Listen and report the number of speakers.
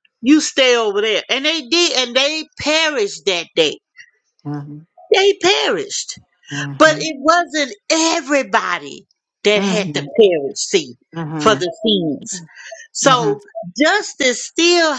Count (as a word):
two